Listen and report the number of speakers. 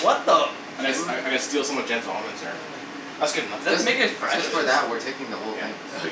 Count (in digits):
3